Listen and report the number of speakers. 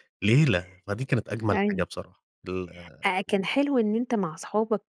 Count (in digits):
2